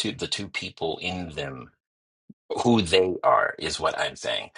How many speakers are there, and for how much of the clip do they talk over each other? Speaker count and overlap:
1, no overlap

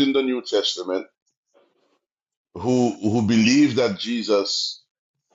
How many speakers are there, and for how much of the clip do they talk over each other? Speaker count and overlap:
1, no overlap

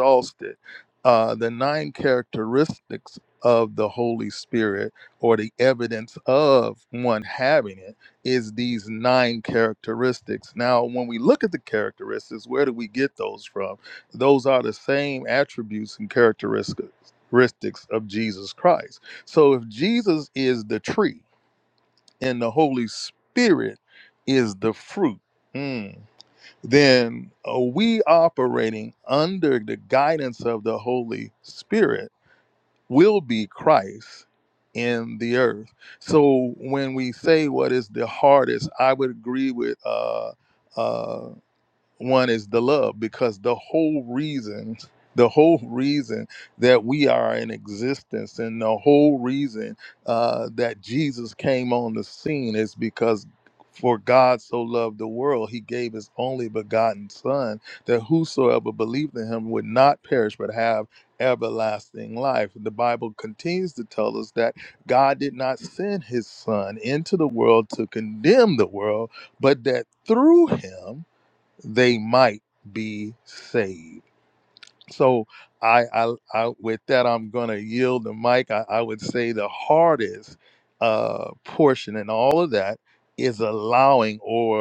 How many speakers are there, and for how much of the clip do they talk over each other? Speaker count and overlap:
1, no overlap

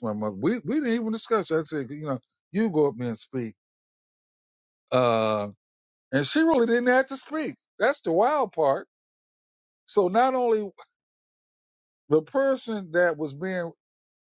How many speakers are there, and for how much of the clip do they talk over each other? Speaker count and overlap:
1, no overlap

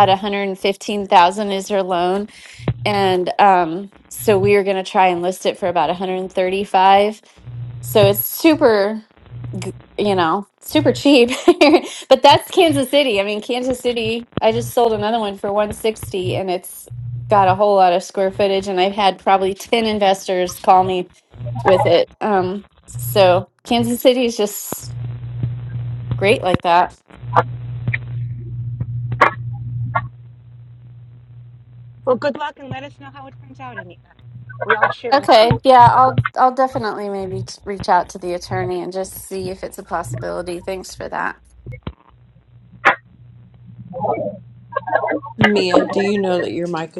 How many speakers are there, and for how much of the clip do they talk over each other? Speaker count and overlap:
3, about 1%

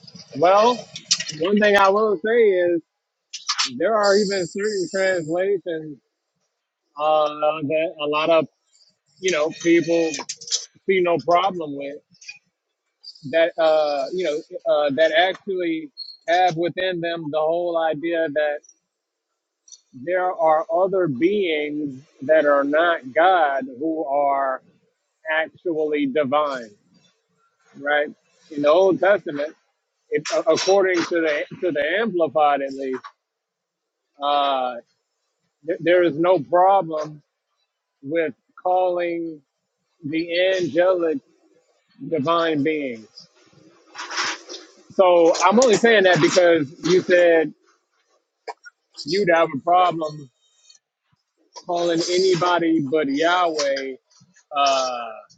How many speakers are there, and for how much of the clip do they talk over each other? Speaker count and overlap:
1, no overlap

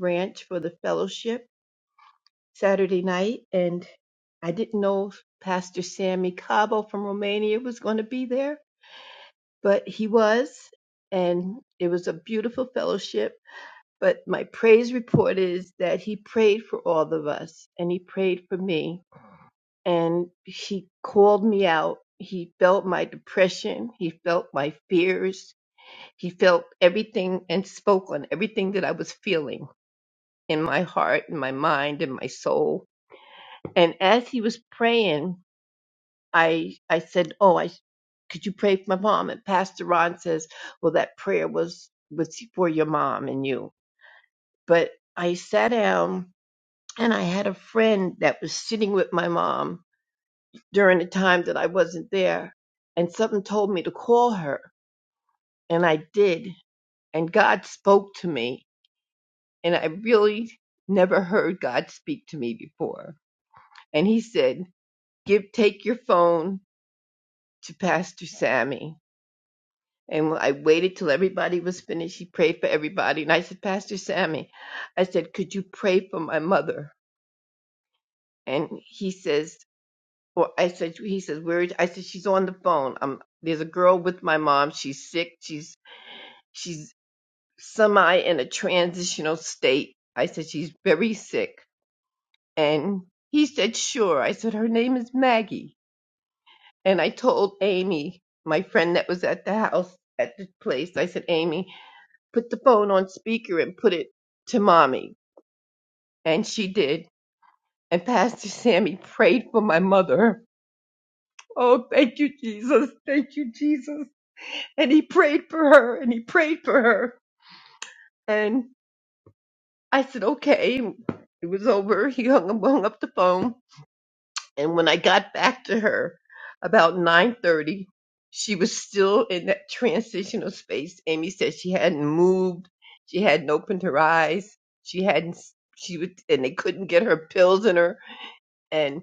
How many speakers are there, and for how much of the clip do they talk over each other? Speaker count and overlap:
1, no overlap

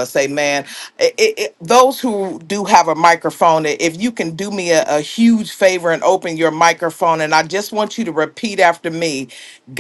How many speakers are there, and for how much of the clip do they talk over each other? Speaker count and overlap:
1, no overlap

